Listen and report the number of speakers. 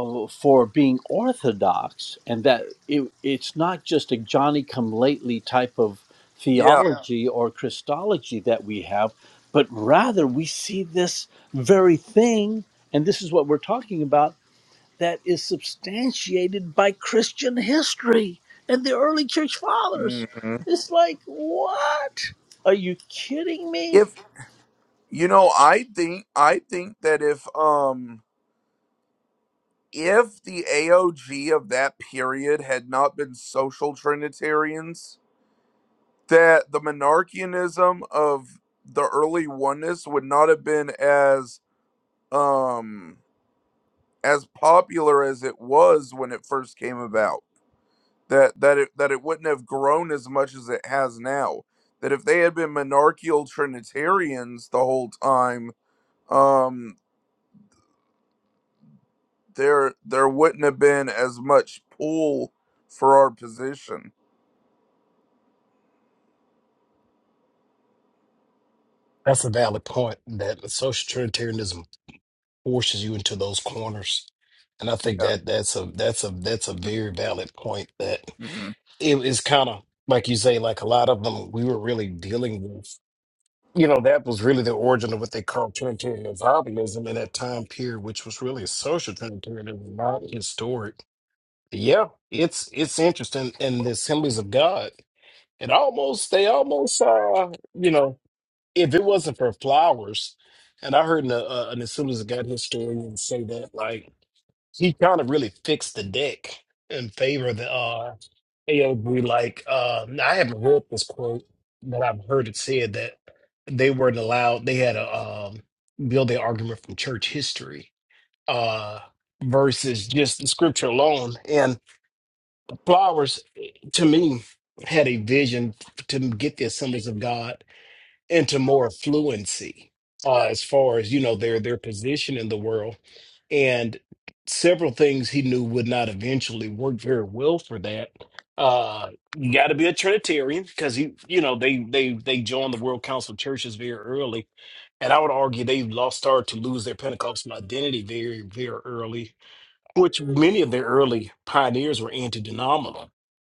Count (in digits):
3